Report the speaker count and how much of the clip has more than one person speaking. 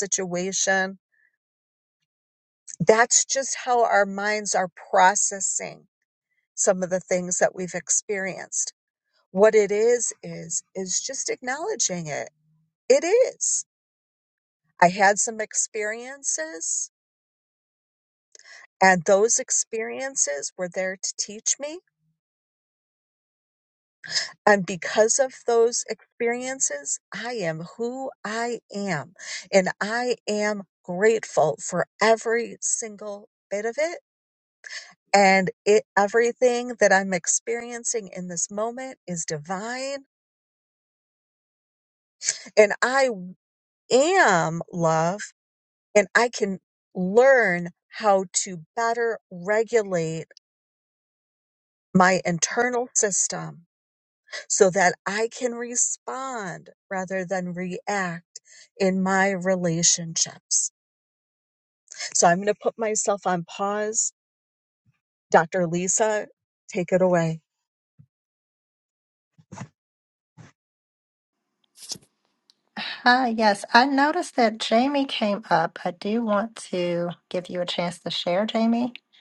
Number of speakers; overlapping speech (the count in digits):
2, no overlap